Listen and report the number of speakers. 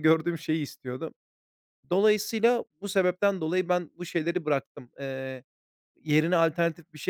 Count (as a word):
one